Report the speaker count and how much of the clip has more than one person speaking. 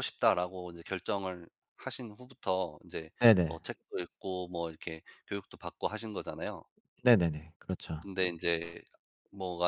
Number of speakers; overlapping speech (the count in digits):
2, about 1%